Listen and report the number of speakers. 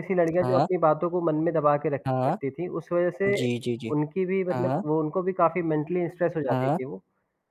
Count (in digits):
2